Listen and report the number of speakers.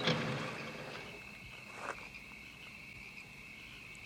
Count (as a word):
zero